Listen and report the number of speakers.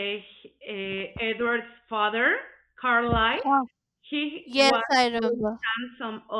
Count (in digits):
2